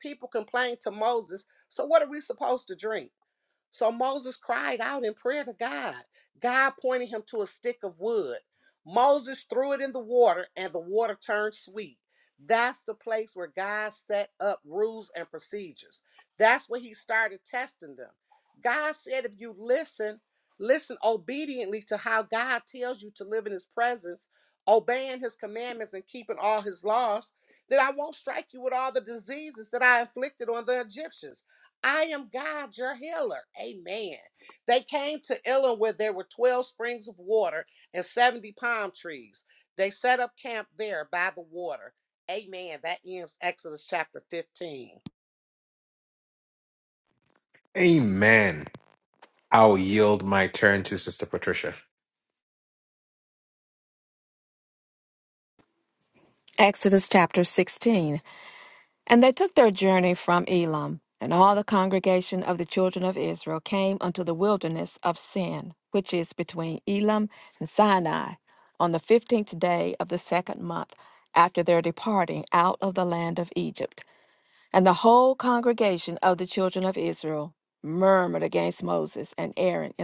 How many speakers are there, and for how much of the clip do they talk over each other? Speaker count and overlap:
three, no overlap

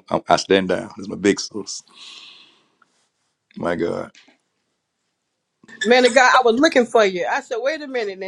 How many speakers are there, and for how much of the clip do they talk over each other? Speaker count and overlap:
two, no overlap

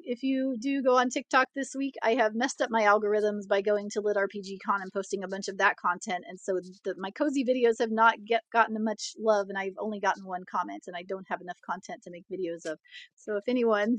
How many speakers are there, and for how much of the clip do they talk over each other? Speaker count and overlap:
one, no overlap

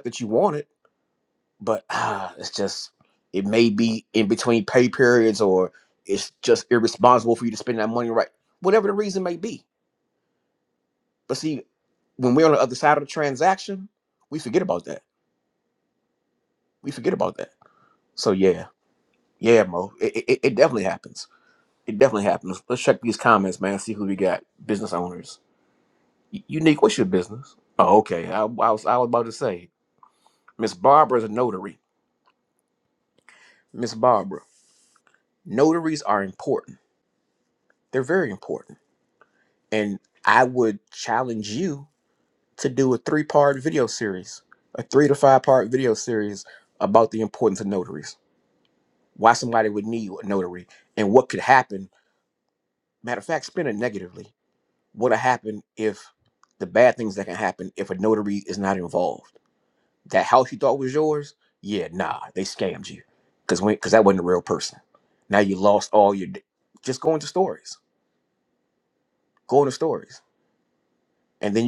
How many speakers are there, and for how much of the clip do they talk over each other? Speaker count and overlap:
one, no overlap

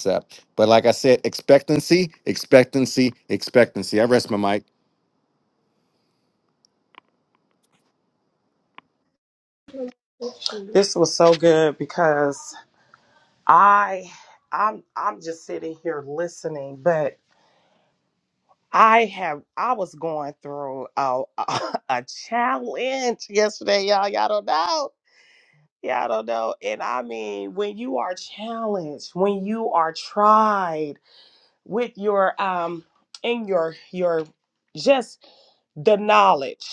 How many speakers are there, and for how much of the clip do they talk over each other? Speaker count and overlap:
two, no overlap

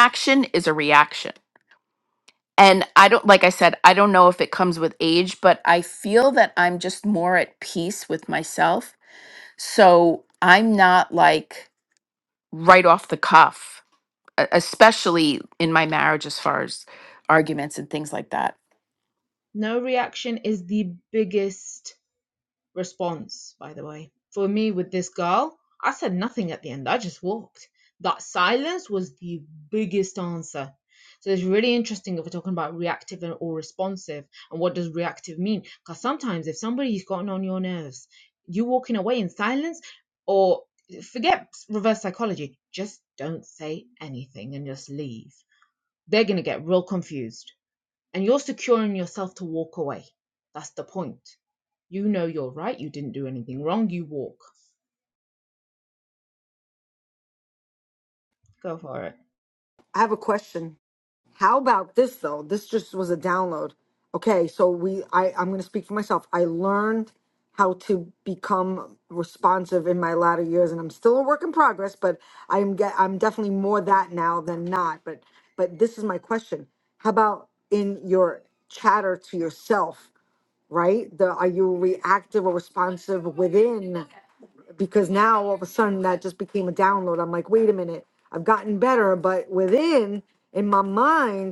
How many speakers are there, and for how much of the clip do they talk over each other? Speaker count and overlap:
three, no overlap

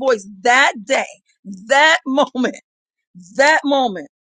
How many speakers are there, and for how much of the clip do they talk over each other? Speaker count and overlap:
one, no overlap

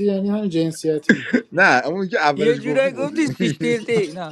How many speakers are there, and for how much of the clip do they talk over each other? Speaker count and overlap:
three, about 35%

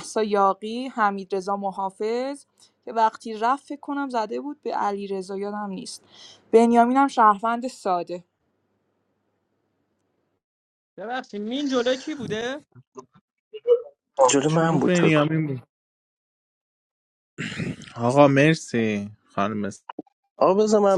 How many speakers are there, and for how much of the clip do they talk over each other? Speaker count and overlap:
four, about 4%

